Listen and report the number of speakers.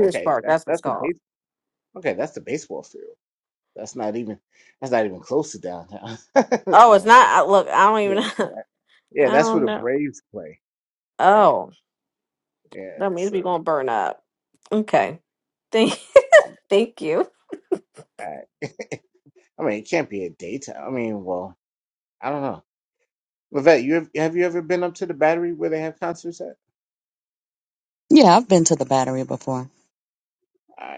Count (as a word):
three